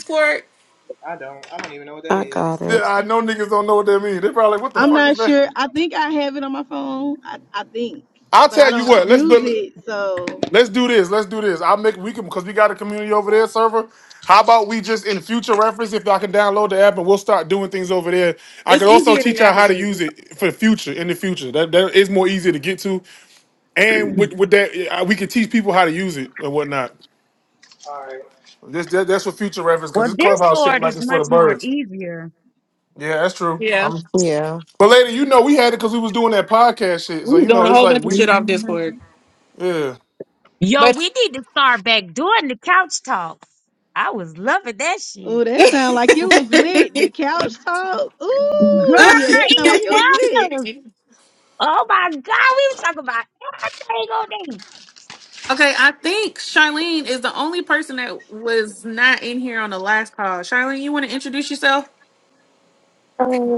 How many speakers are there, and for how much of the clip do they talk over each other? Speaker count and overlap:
6, about 15%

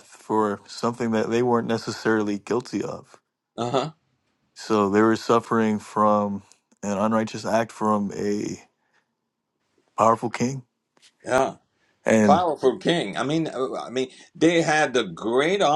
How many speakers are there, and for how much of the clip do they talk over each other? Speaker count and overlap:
2, about 1%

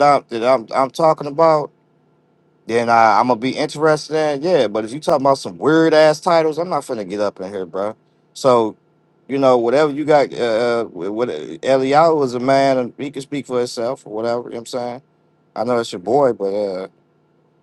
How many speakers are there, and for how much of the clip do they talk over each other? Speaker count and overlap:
1, no overlap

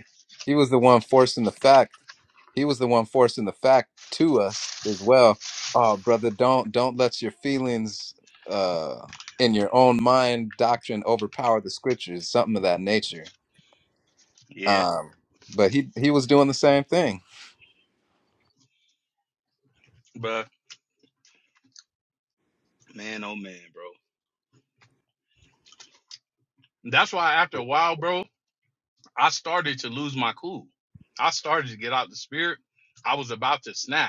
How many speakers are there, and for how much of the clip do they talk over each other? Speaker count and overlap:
2, about 1%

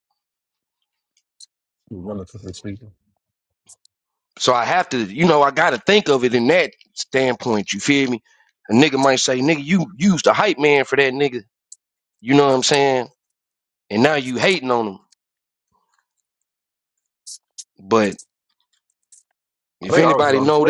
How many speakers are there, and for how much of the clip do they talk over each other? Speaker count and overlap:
2, about 4%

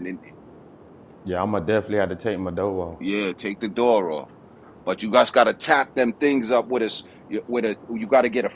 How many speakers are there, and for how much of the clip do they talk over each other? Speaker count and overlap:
2, no overlap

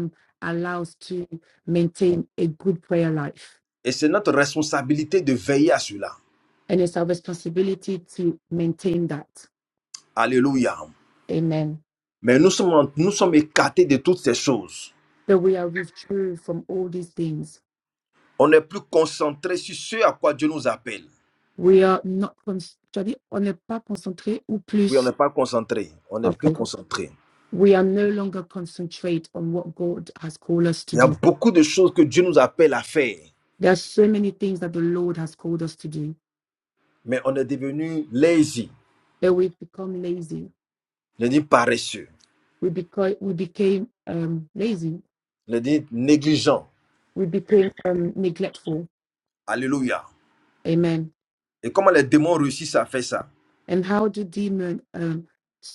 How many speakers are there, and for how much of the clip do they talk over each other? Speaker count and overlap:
2, about 1%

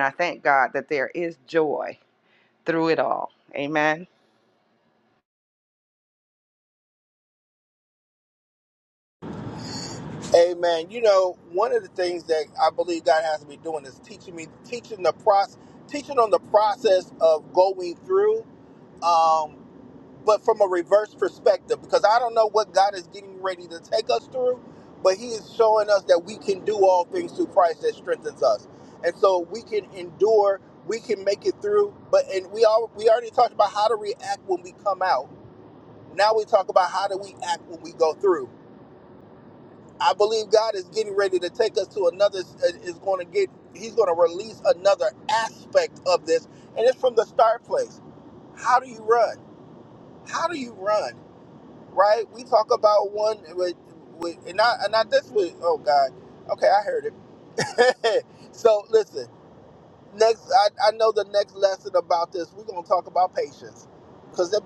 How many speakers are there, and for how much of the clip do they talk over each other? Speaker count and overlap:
2, no overlap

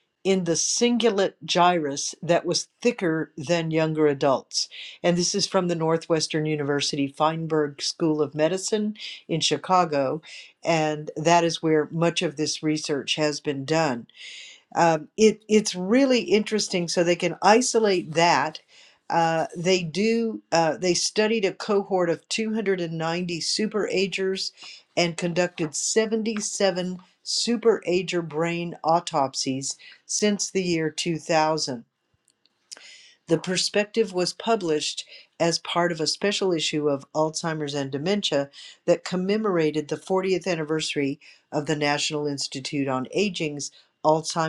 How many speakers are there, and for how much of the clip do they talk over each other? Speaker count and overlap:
1, no overlap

